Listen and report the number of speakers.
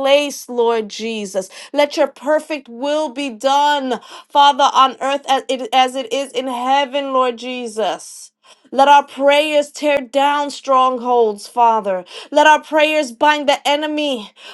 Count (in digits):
1